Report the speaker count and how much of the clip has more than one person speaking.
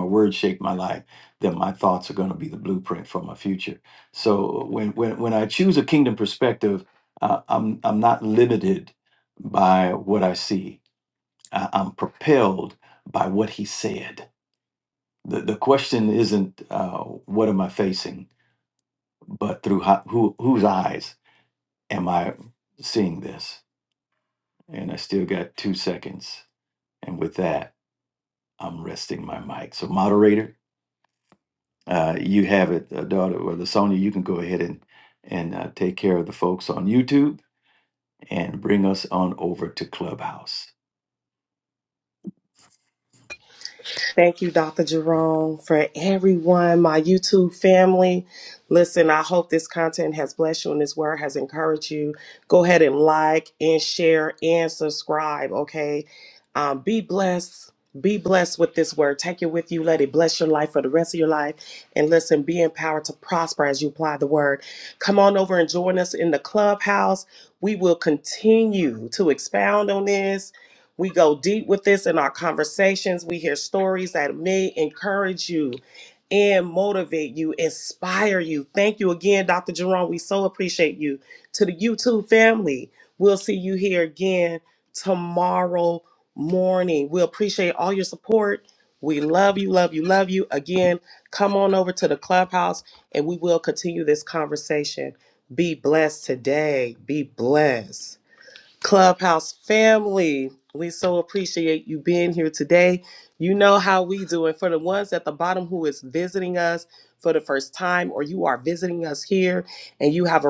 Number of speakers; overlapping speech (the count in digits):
2, no overlap